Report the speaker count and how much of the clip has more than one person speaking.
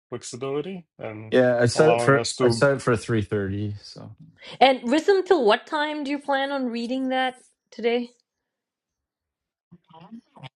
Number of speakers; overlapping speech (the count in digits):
3, about 8%